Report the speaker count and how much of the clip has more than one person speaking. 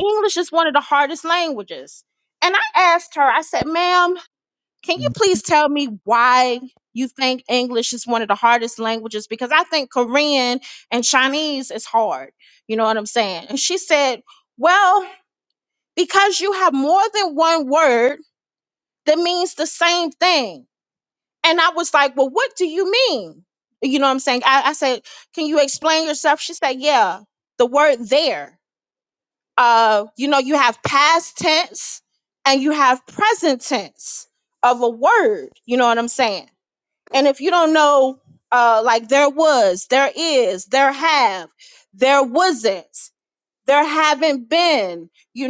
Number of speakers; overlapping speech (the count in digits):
1, no overlap